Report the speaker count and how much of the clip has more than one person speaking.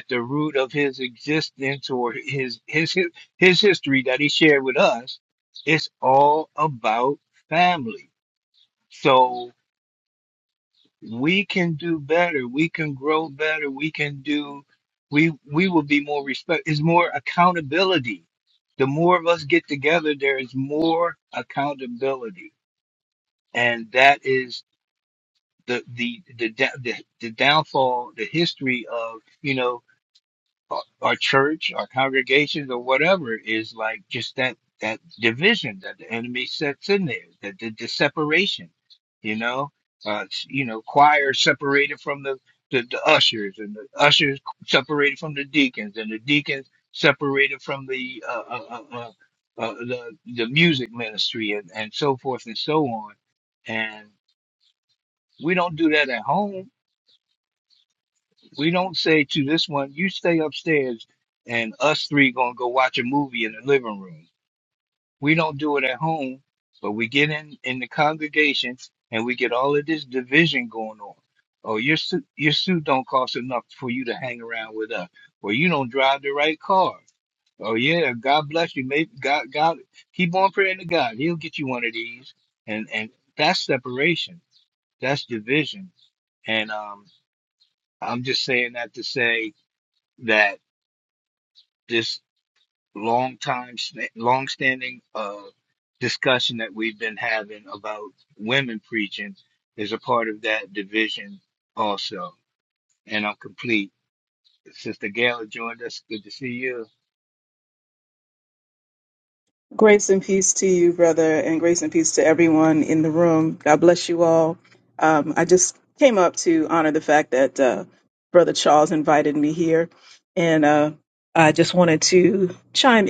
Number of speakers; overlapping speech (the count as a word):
two, no overlap